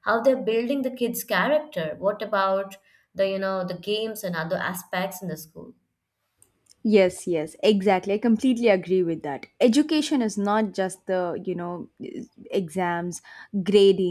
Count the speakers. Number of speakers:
two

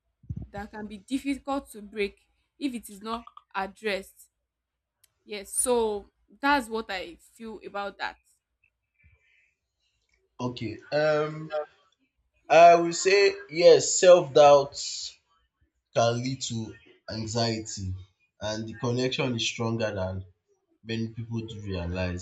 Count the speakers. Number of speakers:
two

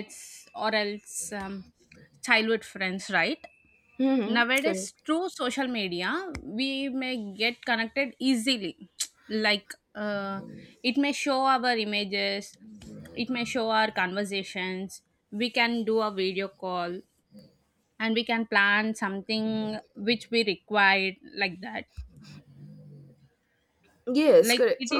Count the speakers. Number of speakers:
two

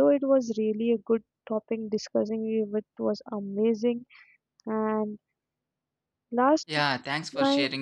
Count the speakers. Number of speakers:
two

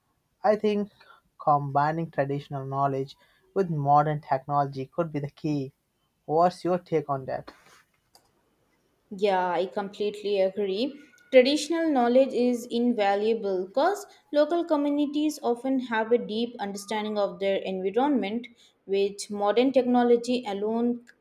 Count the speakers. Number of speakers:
two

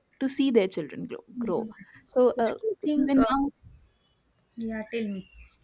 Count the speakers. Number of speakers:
two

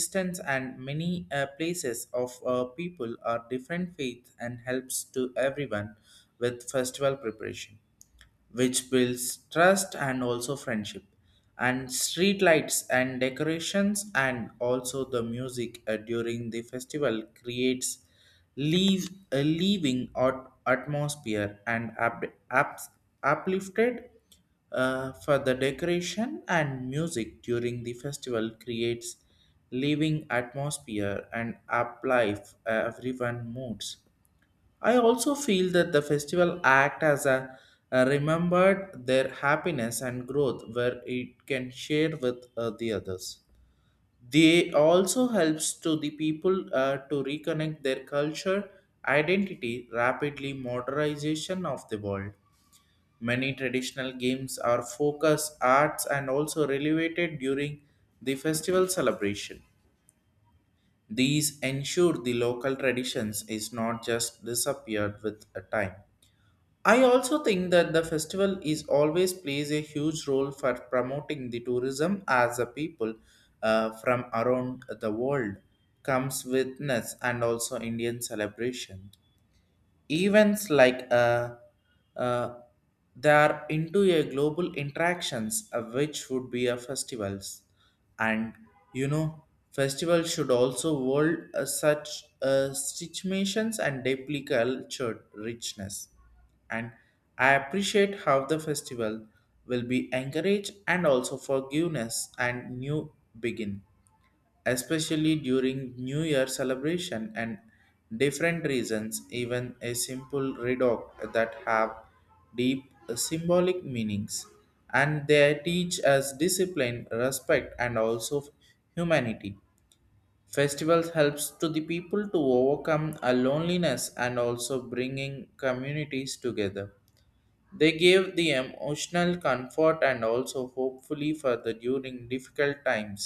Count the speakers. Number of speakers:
one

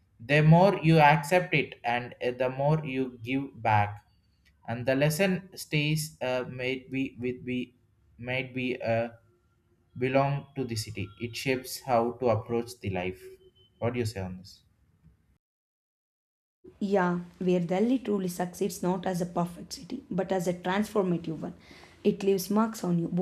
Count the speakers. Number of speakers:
two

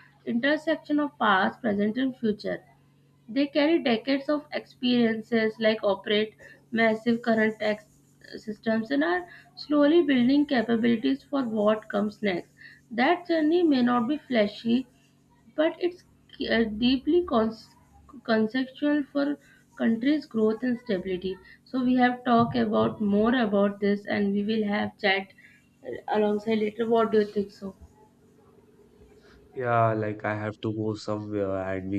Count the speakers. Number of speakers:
two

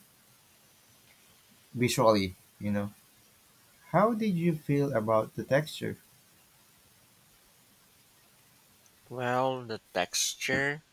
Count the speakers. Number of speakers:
two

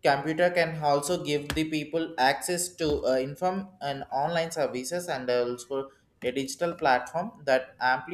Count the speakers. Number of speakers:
one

